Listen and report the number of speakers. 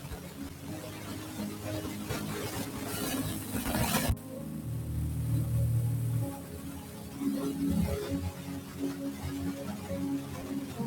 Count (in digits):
0